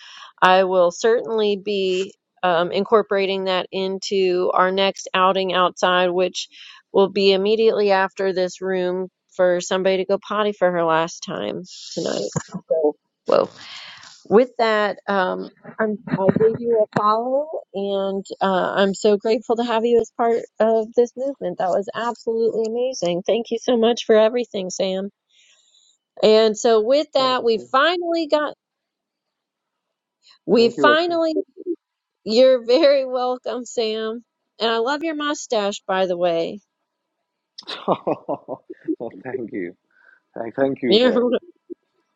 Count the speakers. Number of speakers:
two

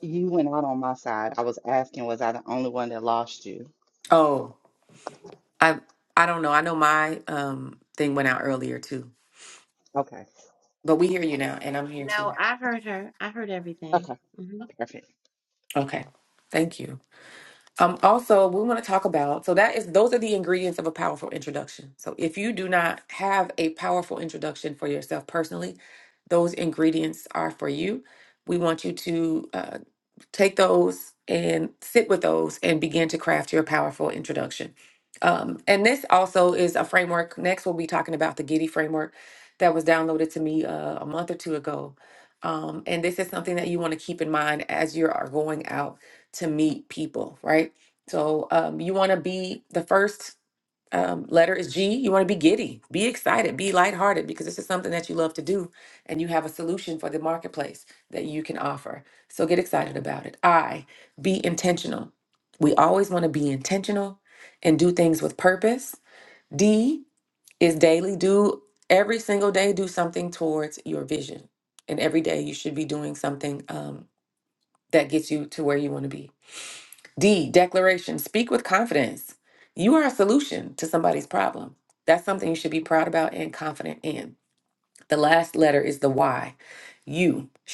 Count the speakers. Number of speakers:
three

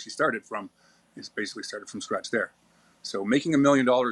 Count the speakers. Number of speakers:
one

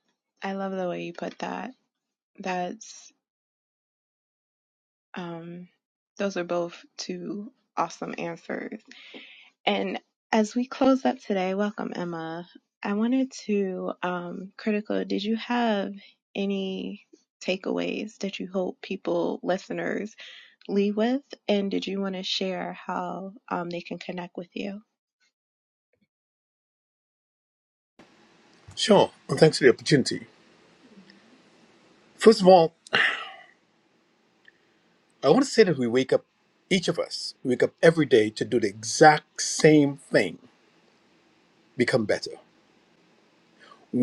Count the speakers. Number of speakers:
two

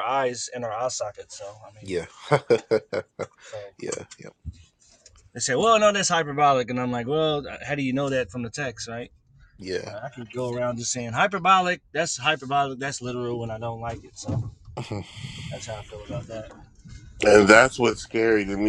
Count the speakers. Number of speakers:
three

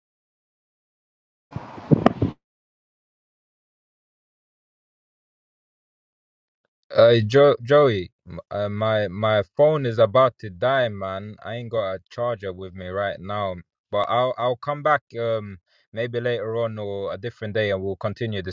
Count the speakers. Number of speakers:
one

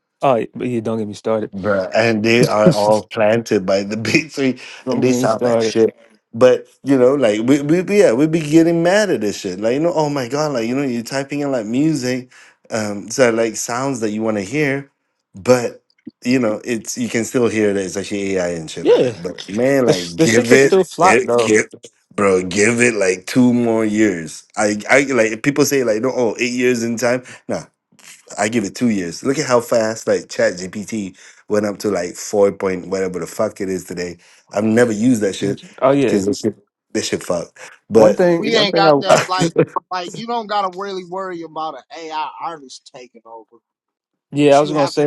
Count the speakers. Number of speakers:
three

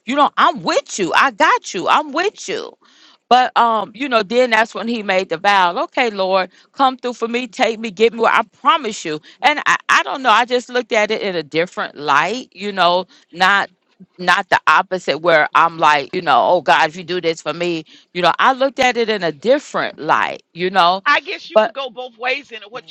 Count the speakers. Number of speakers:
two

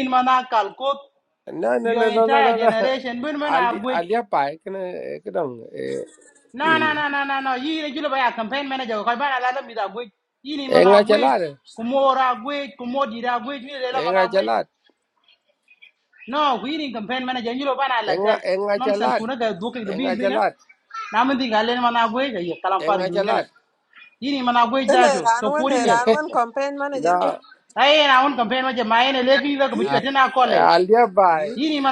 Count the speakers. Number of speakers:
three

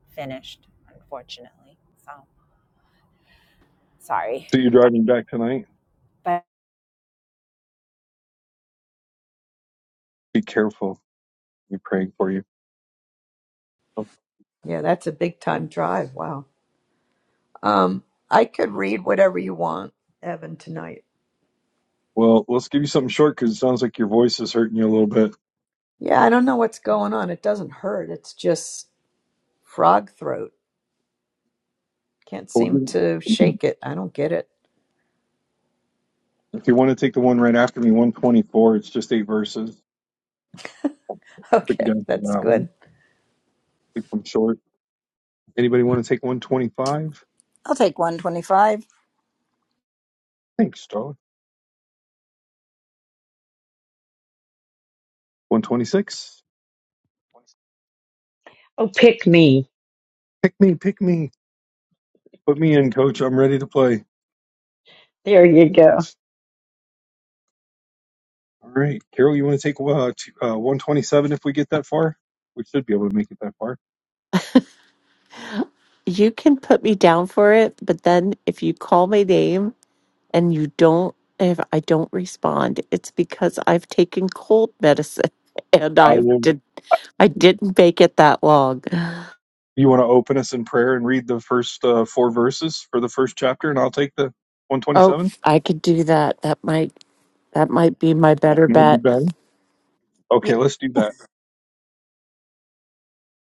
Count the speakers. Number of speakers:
six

